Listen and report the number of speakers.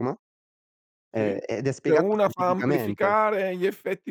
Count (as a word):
two